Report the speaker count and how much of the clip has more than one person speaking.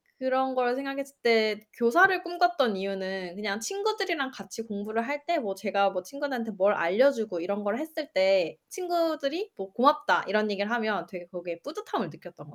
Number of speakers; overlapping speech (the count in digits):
1, no overlap